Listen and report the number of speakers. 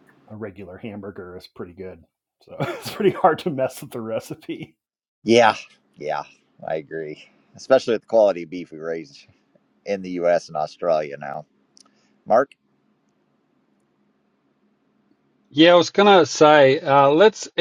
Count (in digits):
3